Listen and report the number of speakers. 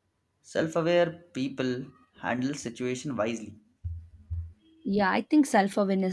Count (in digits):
2